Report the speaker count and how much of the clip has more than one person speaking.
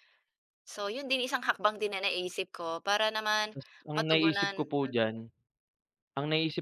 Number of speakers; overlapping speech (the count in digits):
2, about 18%